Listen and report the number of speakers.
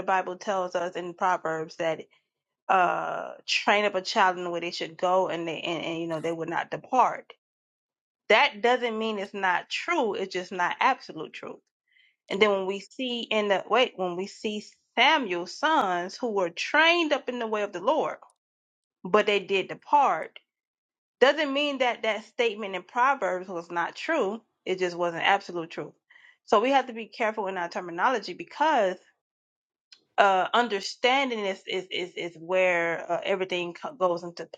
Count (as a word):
one